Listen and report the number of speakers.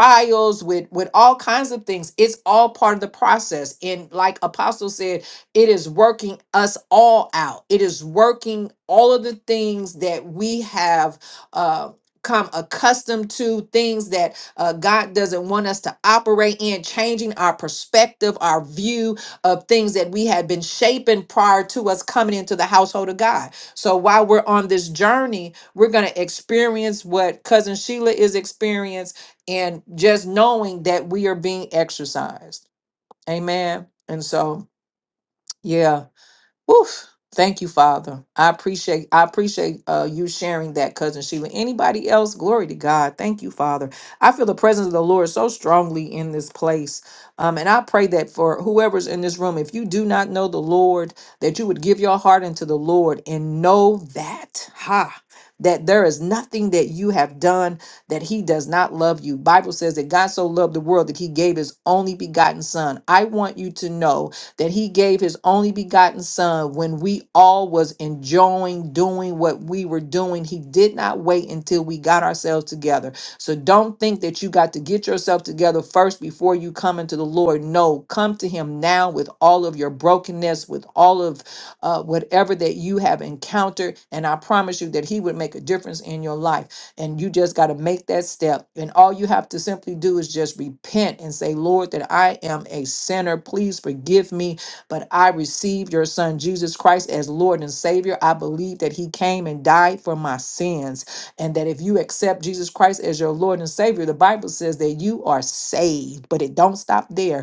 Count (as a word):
one